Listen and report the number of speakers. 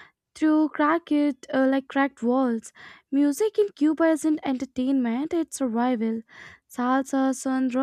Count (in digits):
1